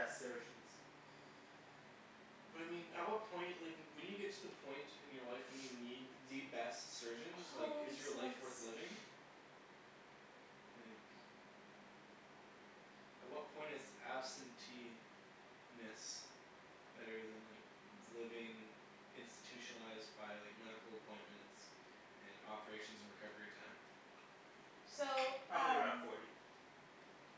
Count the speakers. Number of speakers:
3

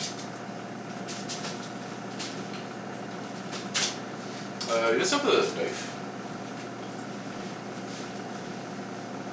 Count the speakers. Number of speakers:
1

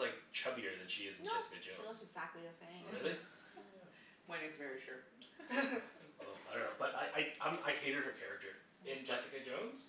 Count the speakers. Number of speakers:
4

